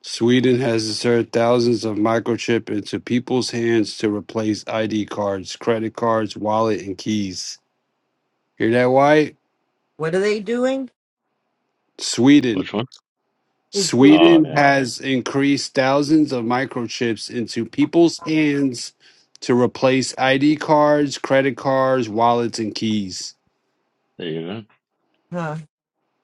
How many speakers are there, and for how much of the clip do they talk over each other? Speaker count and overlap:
3, about 4%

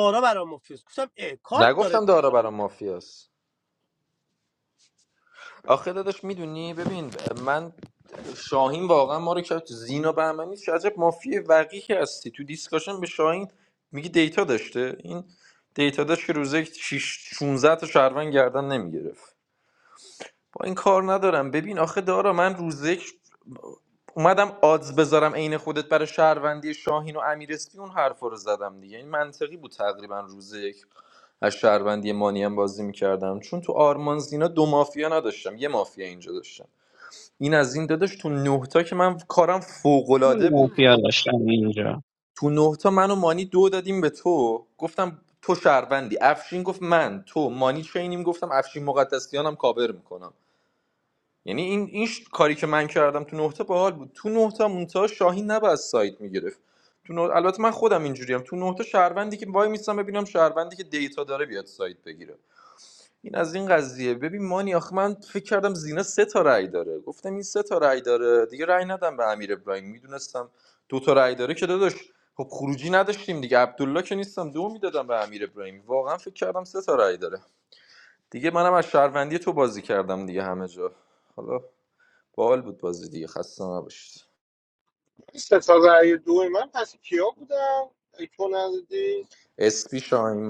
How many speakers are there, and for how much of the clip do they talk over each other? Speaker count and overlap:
4, about 1%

